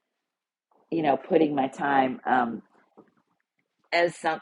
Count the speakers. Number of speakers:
1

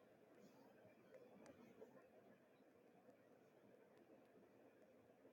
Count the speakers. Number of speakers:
0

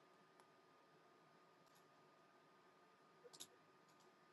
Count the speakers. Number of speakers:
0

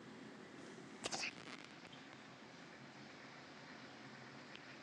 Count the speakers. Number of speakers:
0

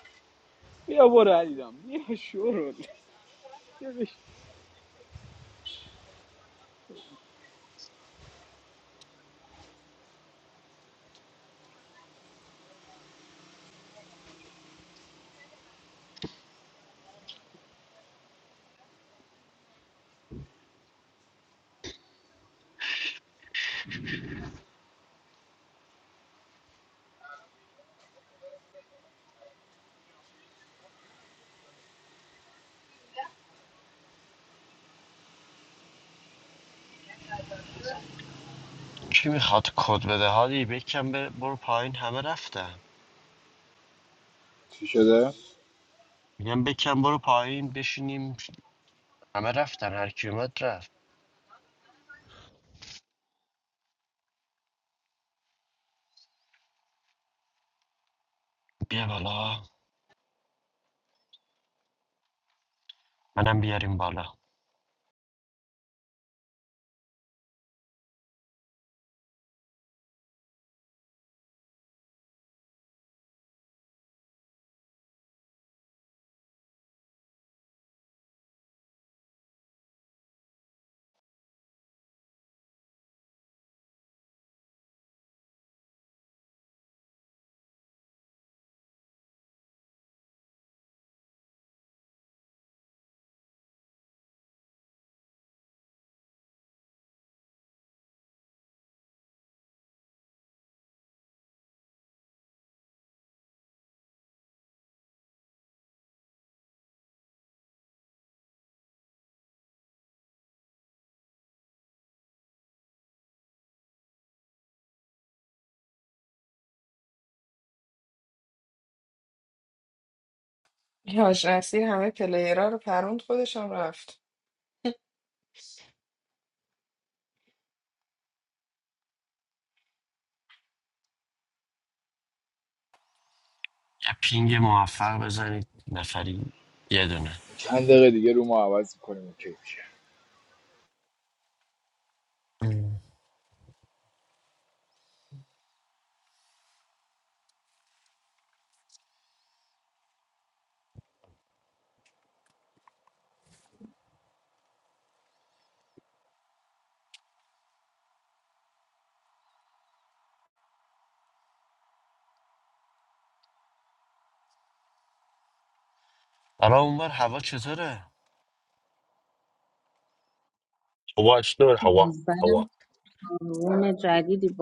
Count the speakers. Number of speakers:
6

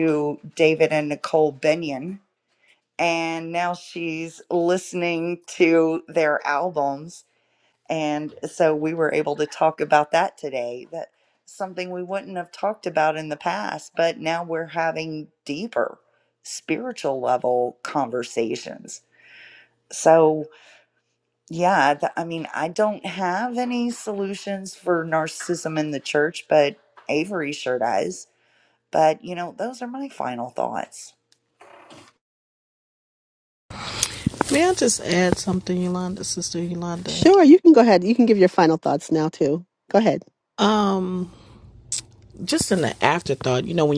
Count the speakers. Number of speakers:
3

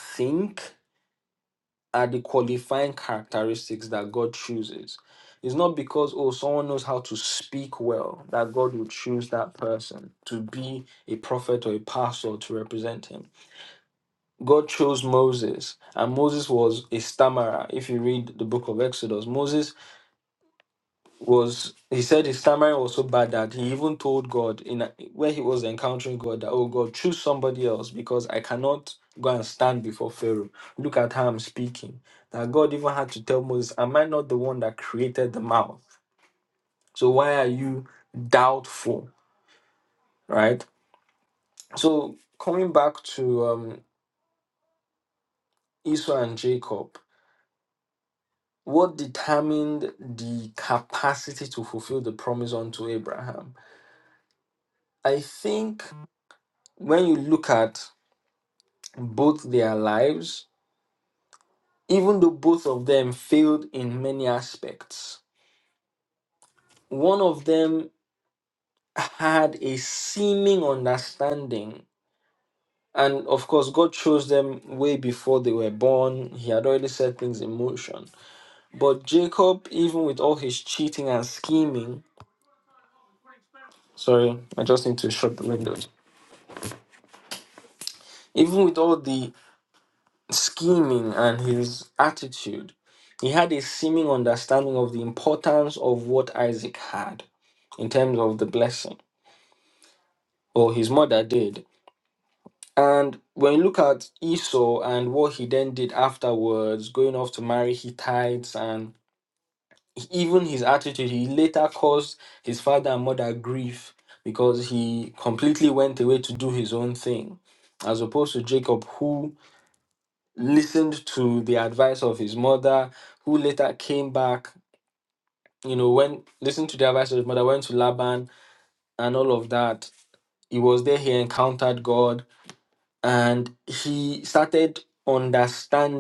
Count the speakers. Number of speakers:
1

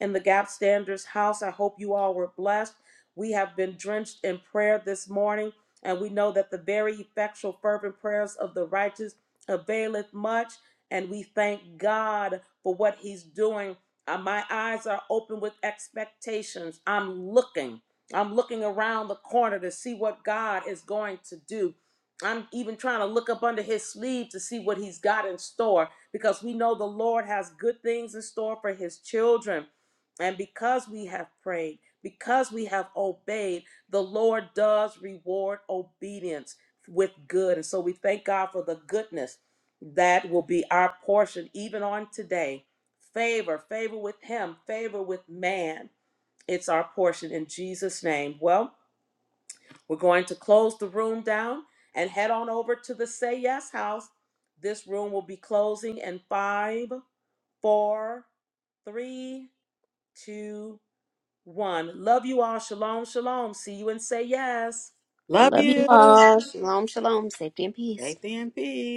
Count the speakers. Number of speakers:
3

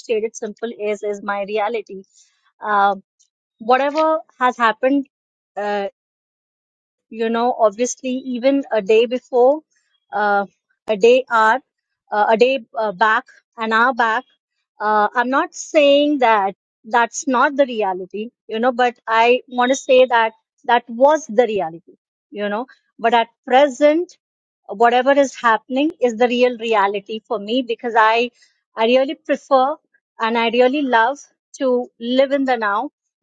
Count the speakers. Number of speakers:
1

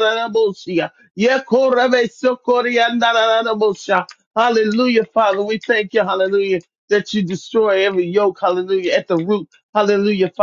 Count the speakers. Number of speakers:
1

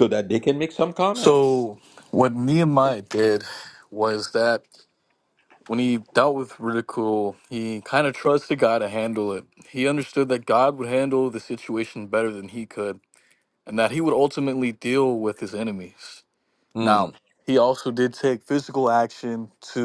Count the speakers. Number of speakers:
2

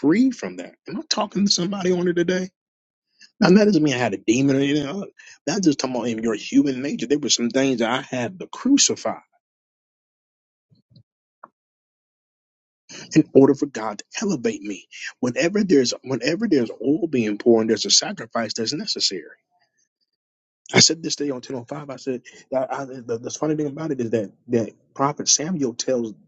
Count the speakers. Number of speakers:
1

